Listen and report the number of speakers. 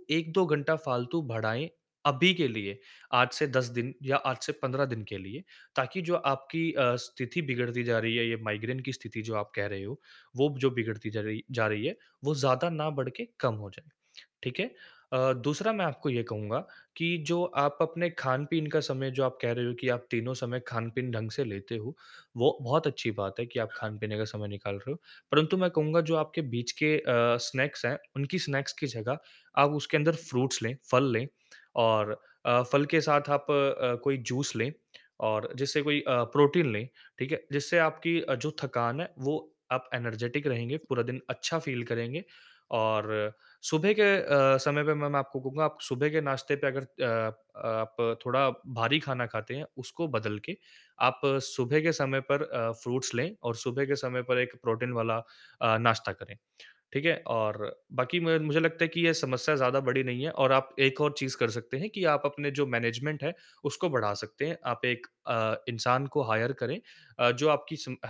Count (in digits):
1